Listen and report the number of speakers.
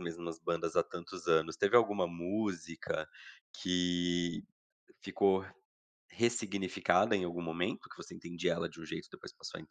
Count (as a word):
one